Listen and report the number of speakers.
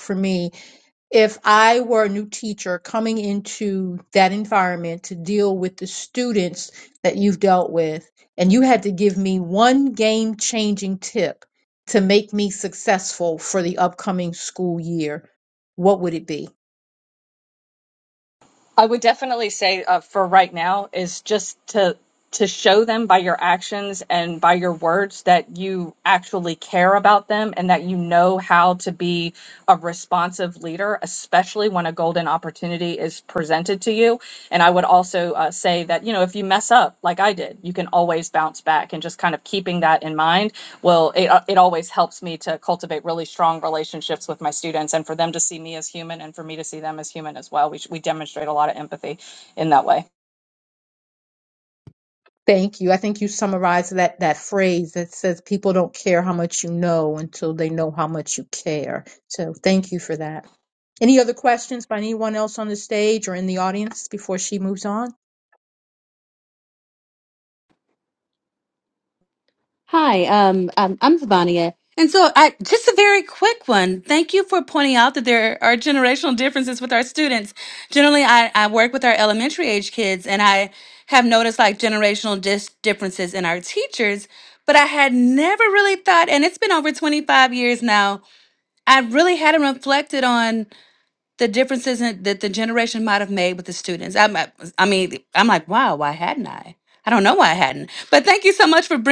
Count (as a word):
three